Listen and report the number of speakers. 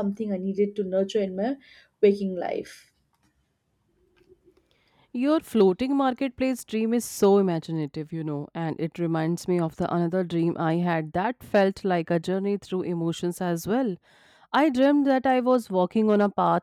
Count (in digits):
2